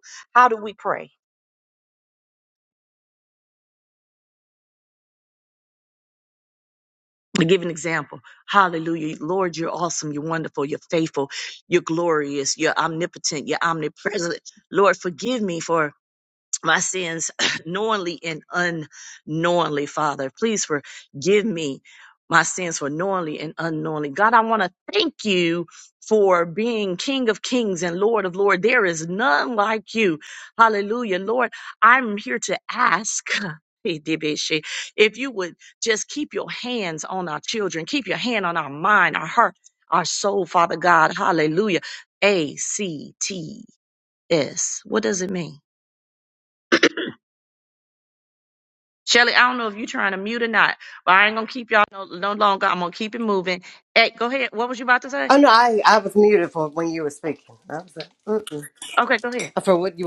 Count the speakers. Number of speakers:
2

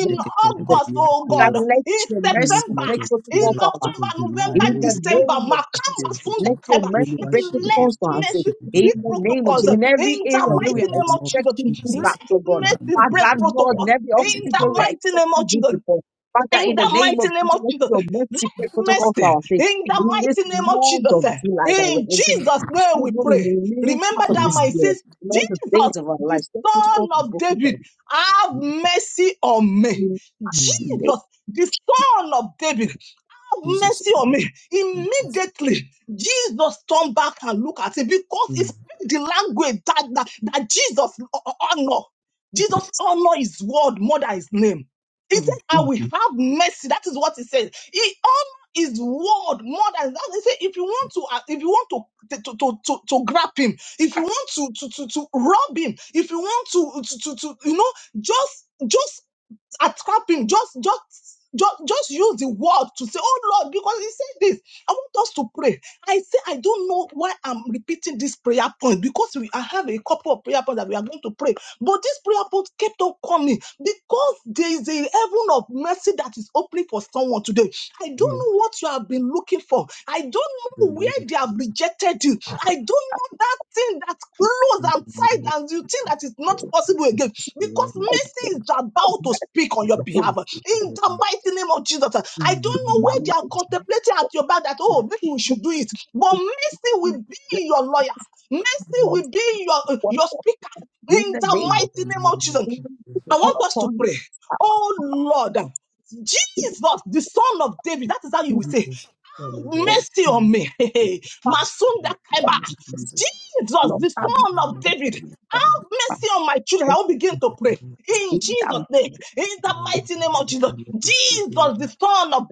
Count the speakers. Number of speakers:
3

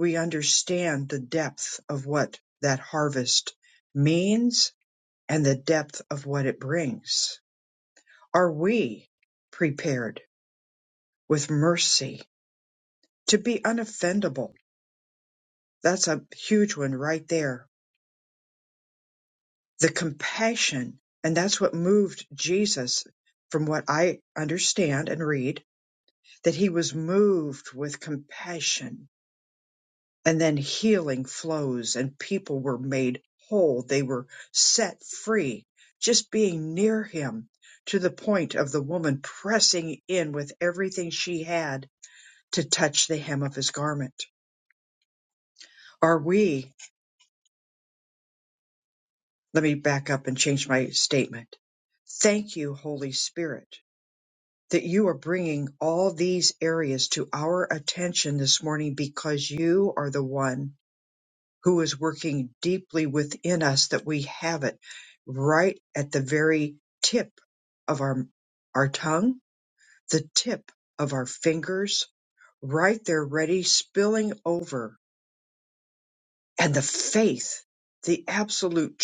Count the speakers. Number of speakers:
1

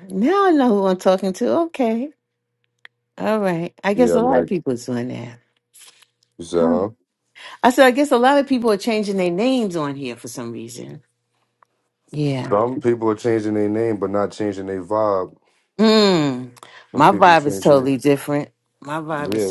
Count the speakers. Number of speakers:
2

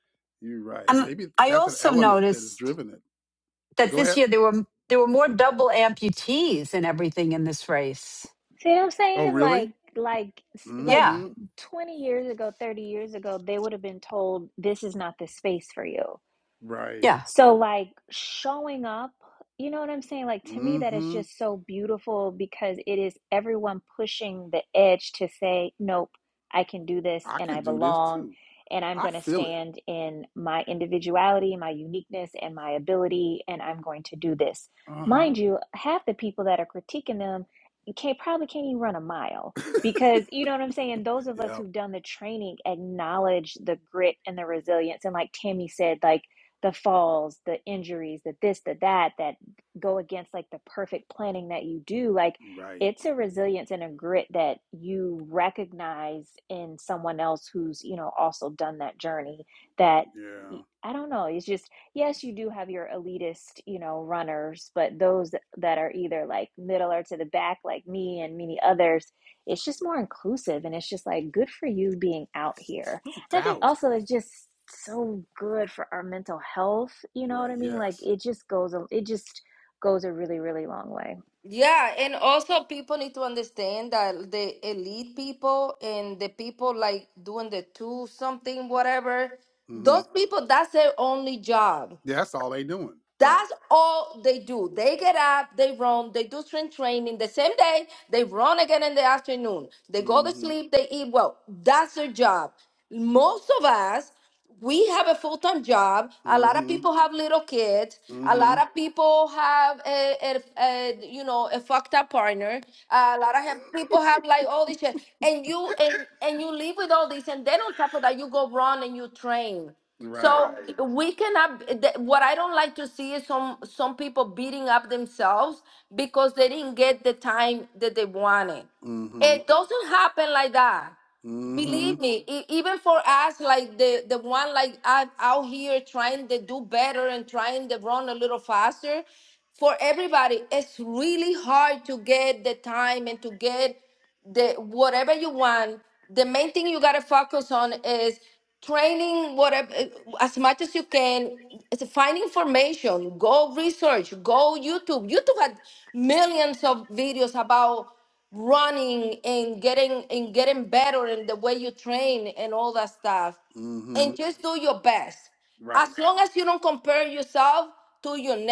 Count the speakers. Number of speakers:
4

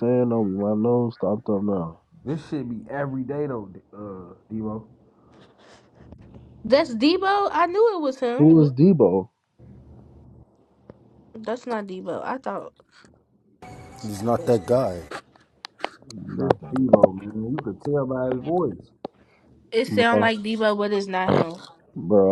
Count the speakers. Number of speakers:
4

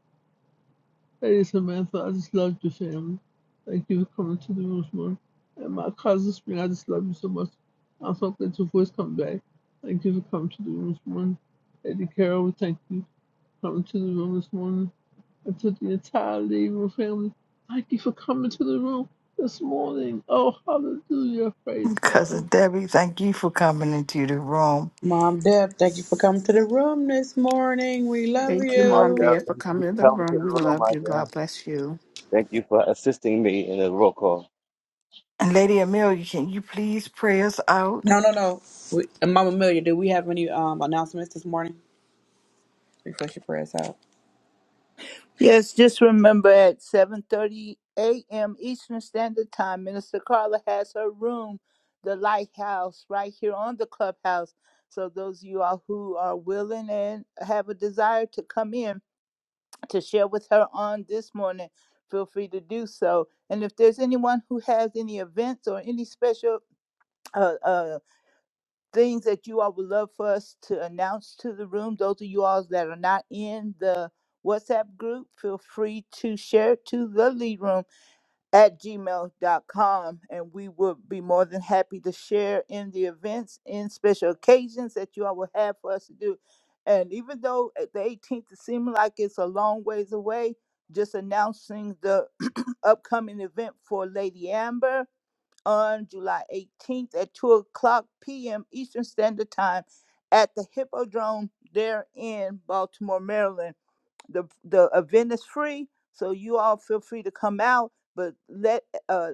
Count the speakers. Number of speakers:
6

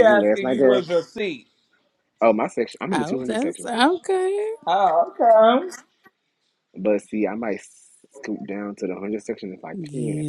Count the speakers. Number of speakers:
3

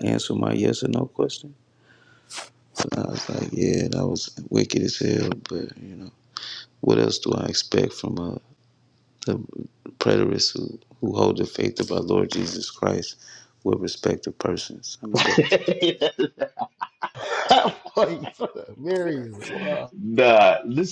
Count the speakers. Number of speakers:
3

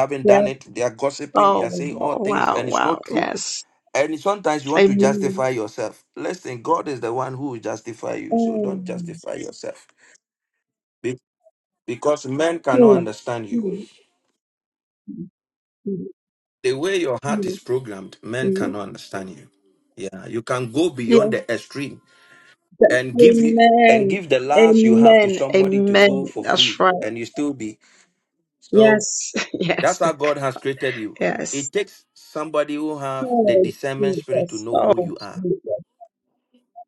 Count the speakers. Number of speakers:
2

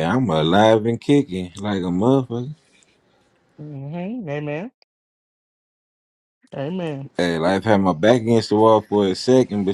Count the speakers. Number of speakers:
2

